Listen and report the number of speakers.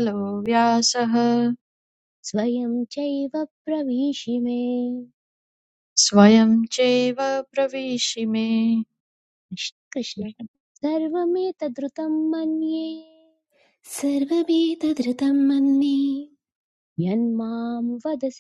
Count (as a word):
three